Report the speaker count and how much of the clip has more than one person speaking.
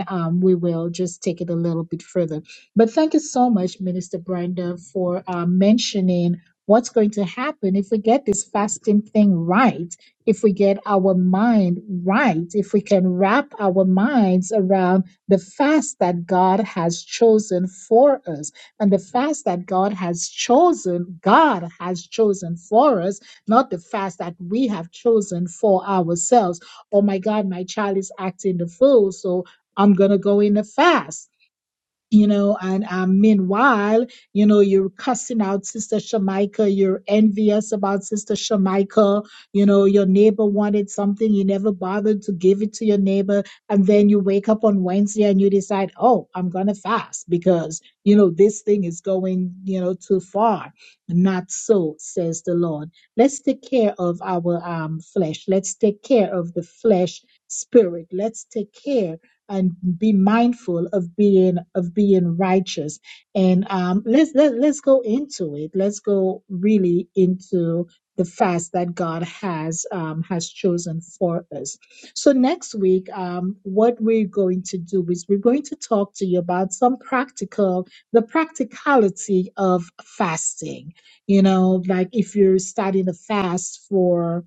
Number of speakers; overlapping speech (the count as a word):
one, no overlap